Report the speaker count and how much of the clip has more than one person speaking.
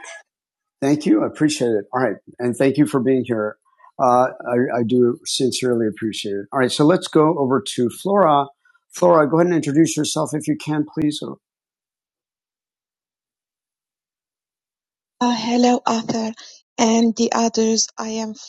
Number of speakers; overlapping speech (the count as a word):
two, no overlap